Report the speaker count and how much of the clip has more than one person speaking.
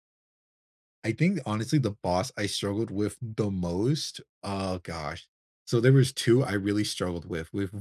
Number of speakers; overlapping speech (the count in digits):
1, no overlap